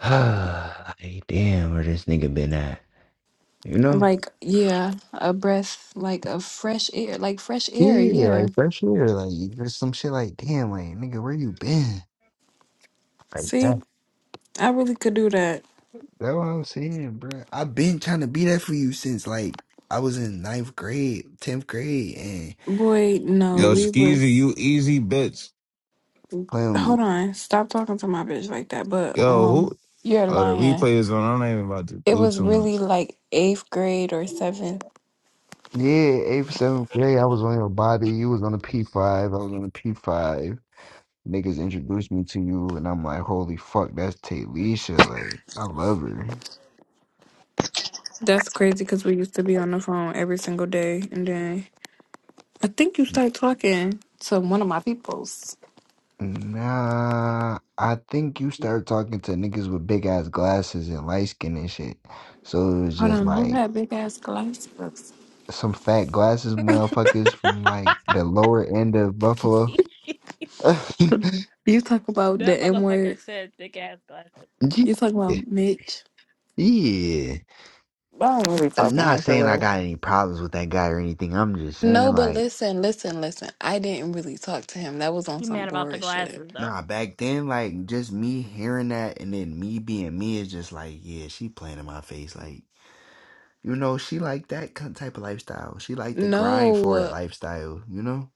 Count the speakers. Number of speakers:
four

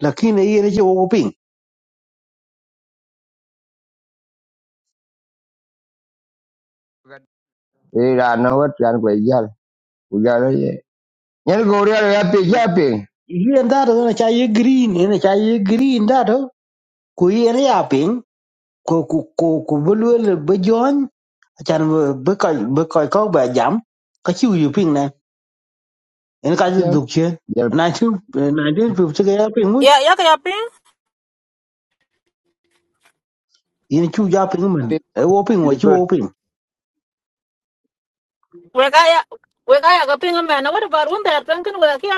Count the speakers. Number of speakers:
three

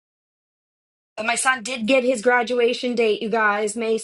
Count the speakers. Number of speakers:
one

